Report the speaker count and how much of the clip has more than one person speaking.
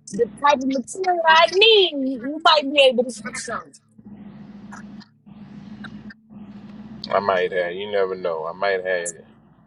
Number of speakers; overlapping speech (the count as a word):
two, no overlap